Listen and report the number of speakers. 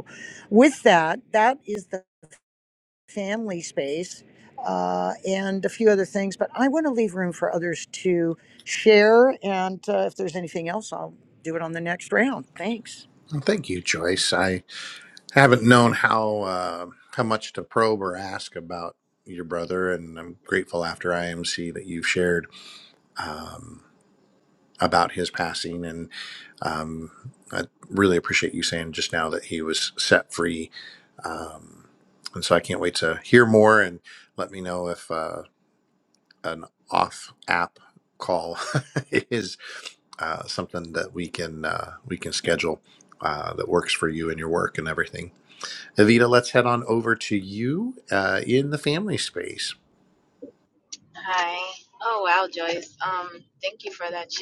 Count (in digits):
3